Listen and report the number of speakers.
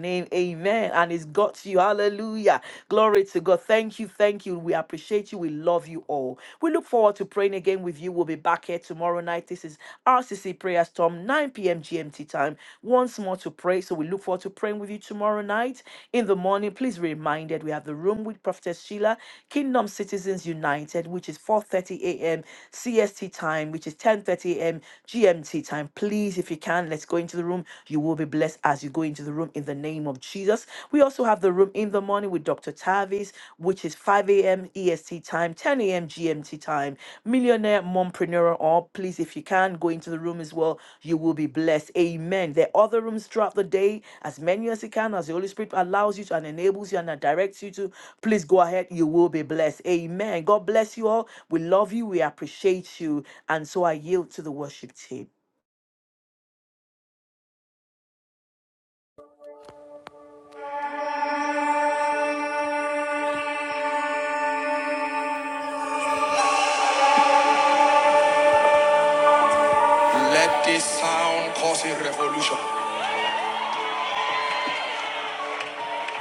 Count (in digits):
2